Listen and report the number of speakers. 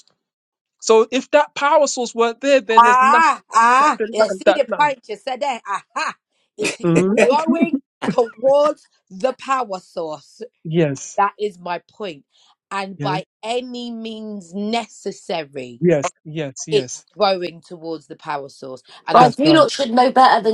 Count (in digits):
3